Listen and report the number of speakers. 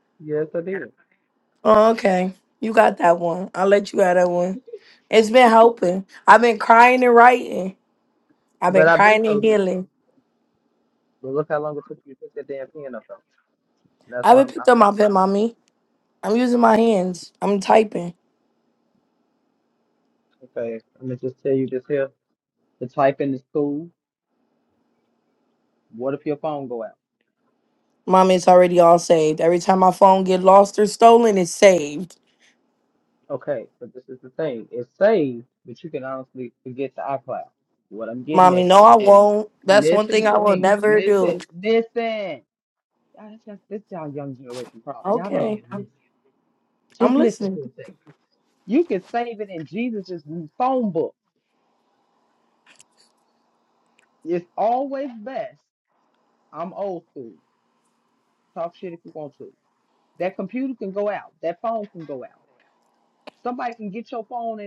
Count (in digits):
2